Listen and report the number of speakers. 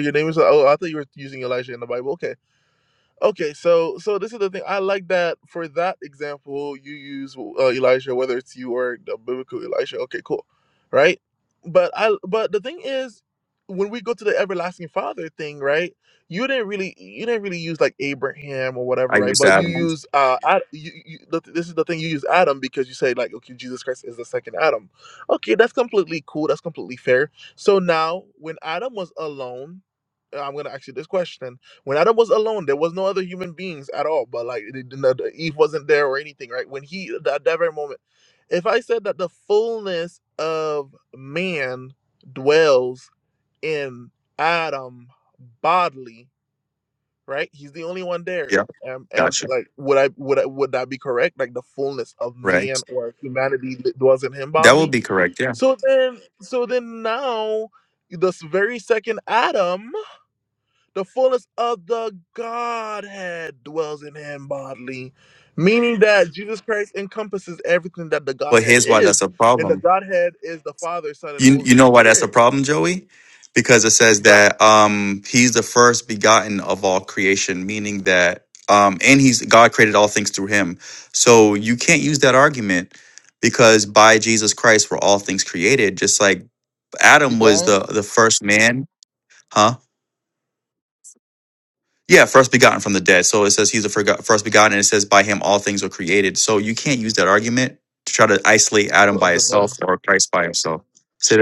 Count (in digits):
2